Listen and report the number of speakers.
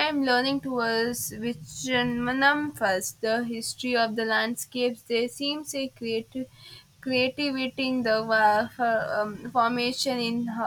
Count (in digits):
1